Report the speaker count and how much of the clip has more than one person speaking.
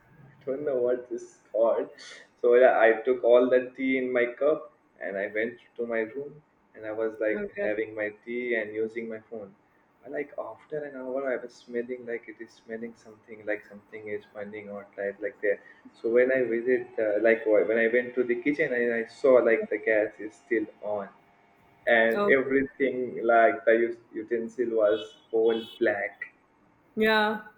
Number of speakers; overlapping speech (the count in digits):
2, about 3%